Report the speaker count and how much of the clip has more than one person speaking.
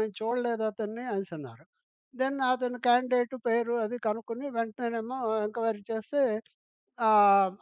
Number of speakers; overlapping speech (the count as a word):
one, no overlap